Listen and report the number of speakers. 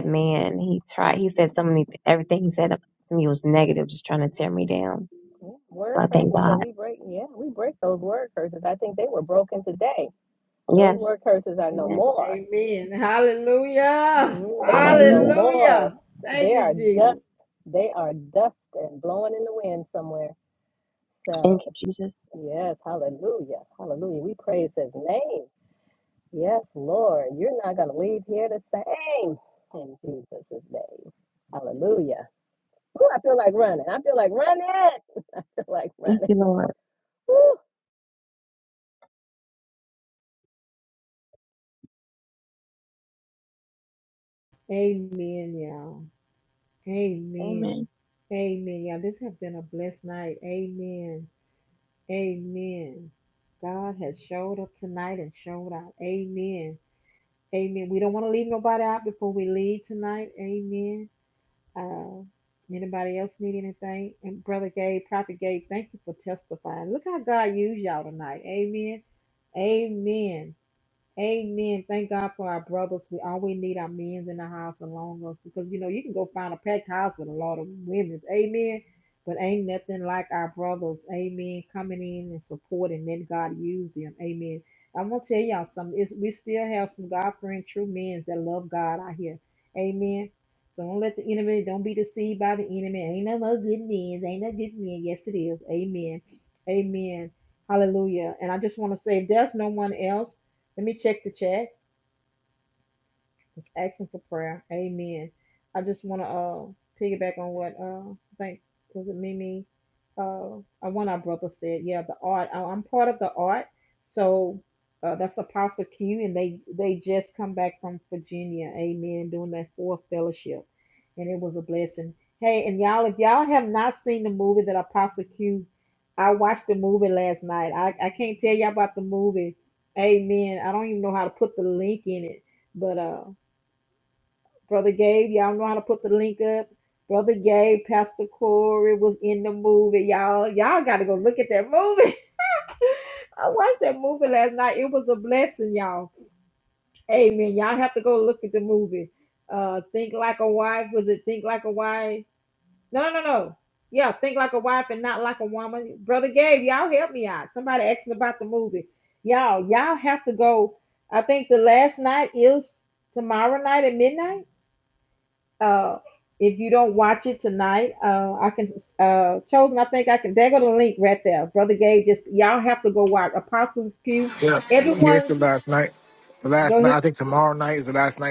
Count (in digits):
4